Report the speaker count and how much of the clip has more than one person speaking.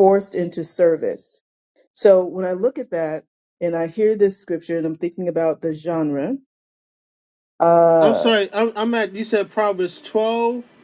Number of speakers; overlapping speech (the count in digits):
2, about 3%